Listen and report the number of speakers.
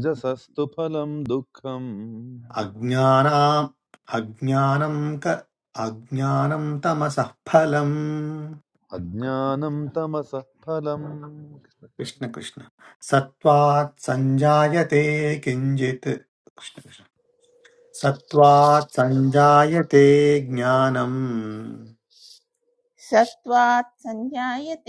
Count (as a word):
three